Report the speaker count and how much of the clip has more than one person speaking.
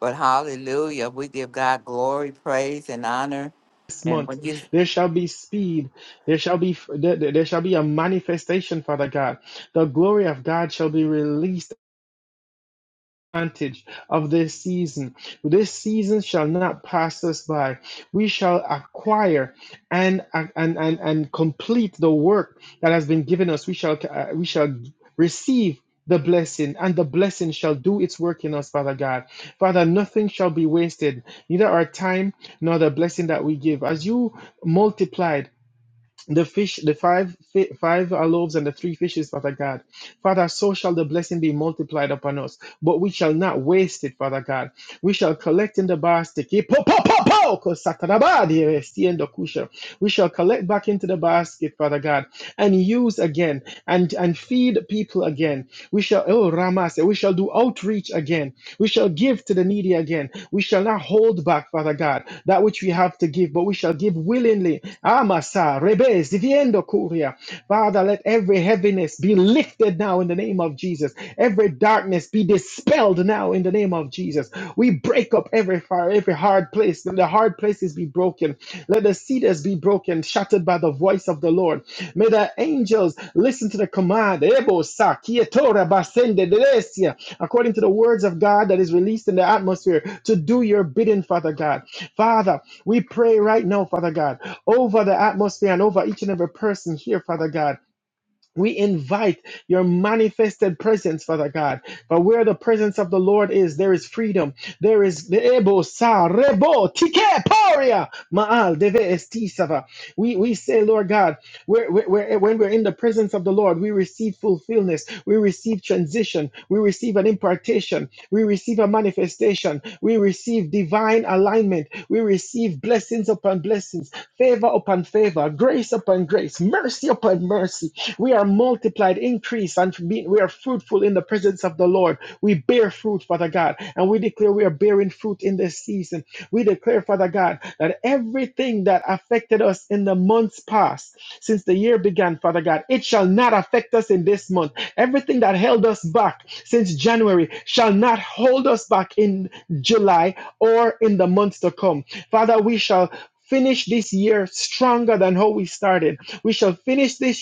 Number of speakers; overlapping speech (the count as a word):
two, under 1%